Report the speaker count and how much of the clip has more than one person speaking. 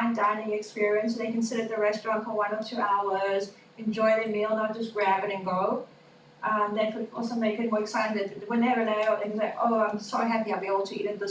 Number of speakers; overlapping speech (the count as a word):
one, no overlap